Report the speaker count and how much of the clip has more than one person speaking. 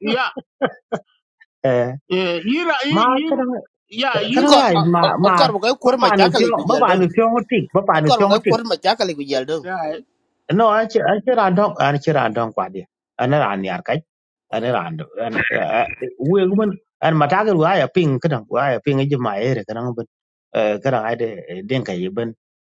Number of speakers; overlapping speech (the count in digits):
3, about 12%